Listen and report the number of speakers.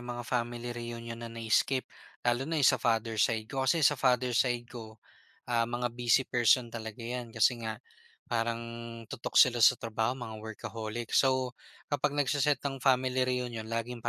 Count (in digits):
1